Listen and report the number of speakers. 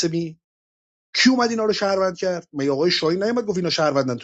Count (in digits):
1